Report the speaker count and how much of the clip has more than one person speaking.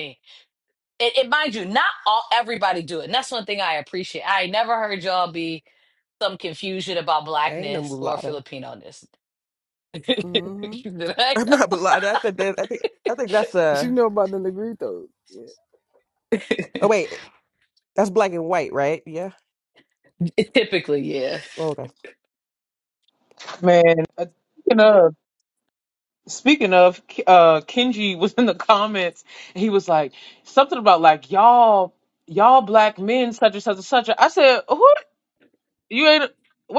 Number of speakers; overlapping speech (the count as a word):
four, about 3%